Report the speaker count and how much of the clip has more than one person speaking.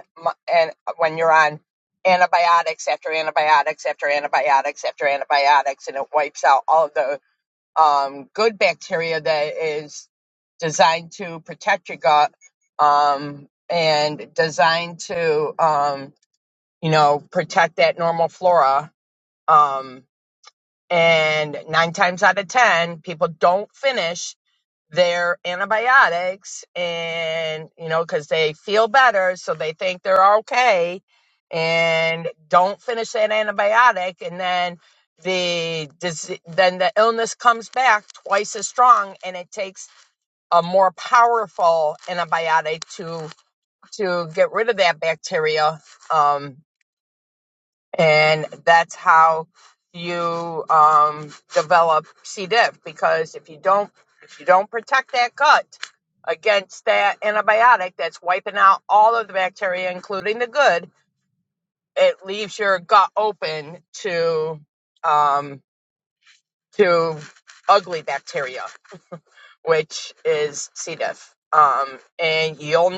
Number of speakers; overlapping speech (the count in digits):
1, no overlap